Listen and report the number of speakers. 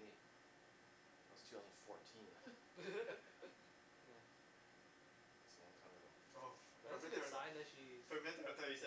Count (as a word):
three